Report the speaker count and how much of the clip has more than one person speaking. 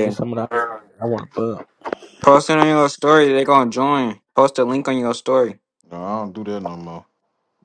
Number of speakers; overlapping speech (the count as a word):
three, about 2%